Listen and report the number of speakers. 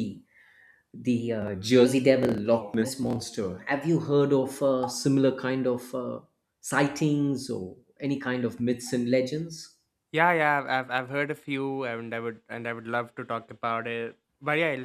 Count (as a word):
two